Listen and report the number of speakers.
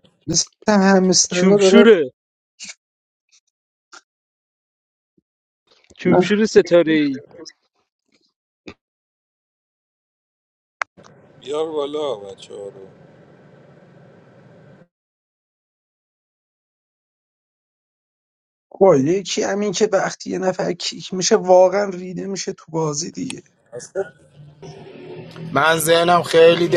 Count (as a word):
four